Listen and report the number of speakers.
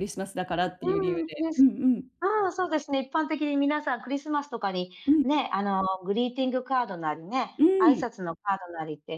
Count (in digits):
2